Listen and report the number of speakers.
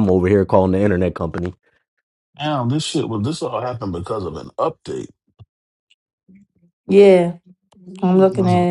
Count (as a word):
three